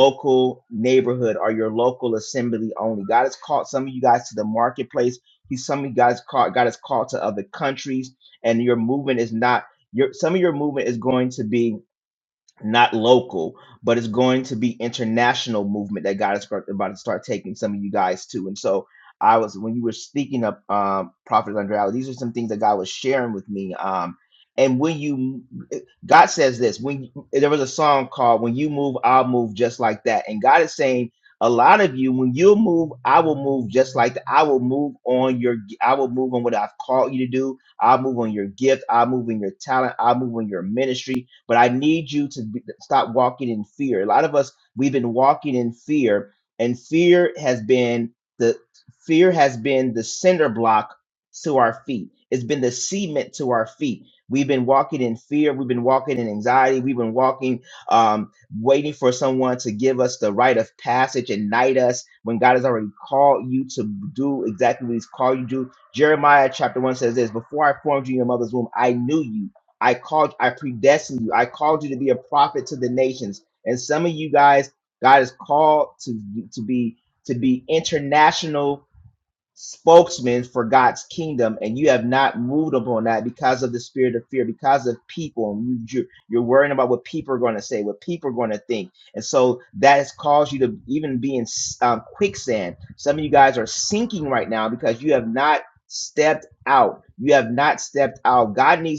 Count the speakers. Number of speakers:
1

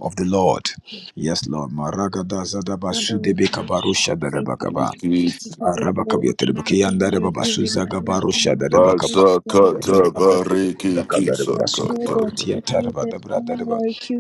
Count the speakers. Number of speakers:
3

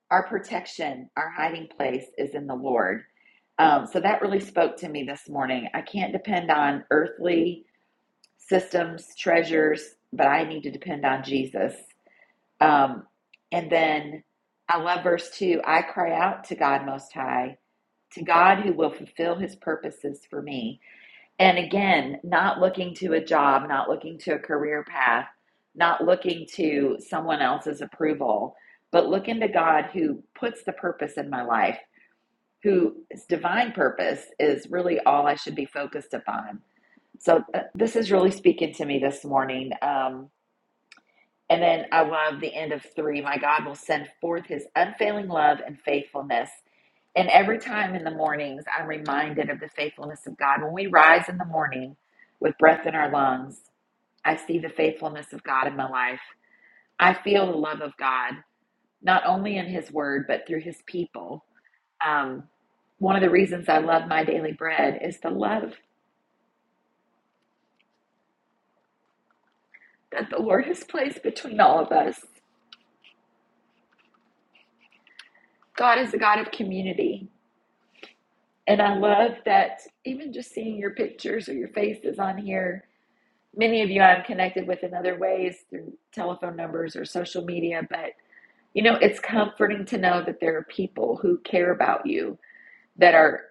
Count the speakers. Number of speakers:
1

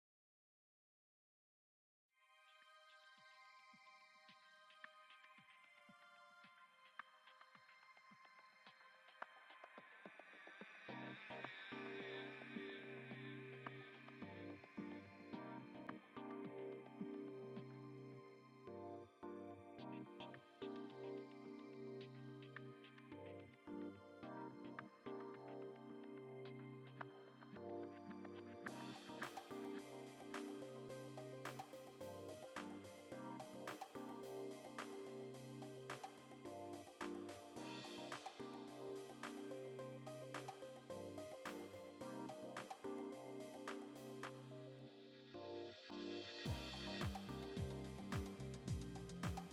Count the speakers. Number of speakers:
0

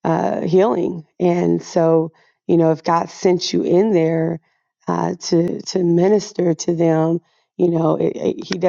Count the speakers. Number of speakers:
1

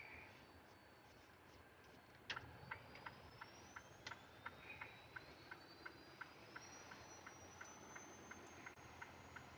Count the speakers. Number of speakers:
0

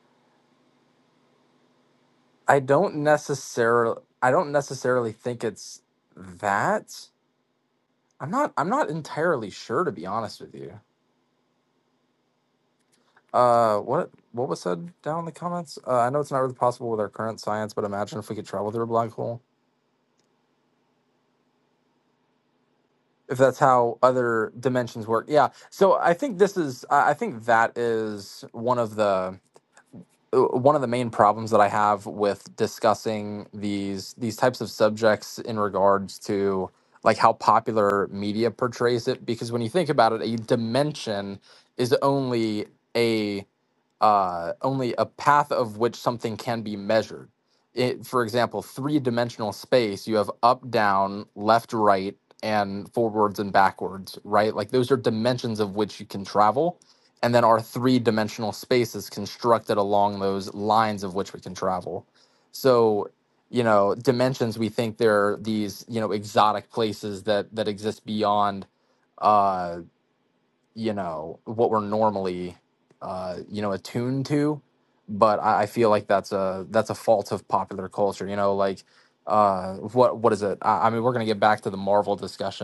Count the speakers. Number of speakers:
1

